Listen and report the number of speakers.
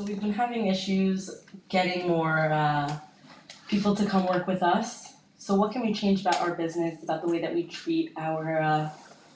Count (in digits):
1